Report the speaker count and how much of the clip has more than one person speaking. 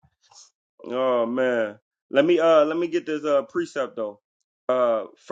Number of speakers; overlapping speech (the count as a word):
one, no overlap